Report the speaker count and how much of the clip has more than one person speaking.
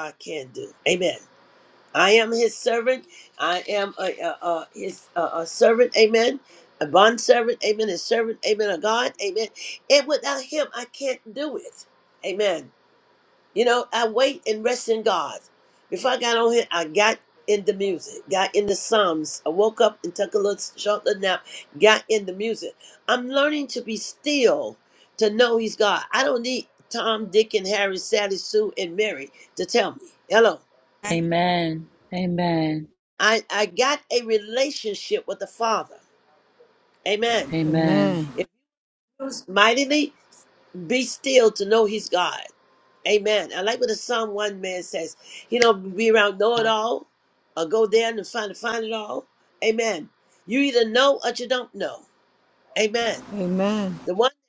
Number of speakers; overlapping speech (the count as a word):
three, about 1%